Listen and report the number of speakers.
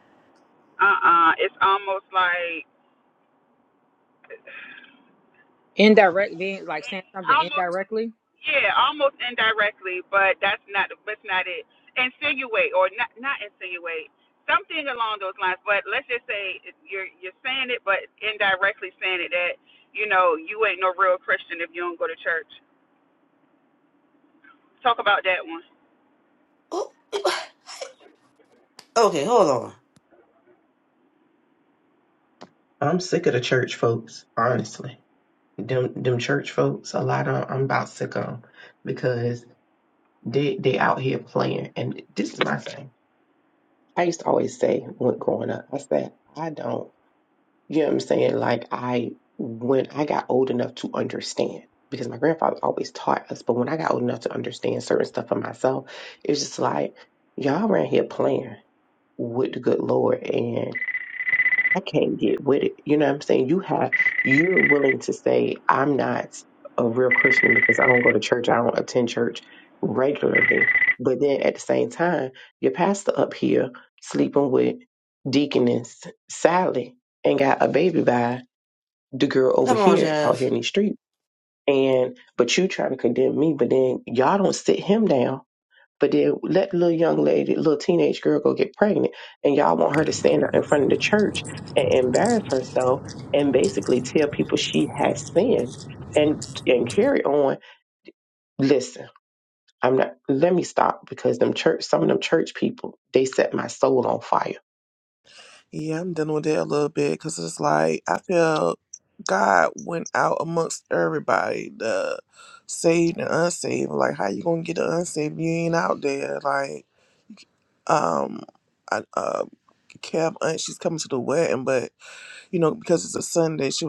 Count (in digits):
5